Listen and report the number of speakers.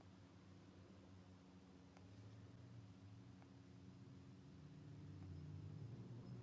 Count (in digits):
0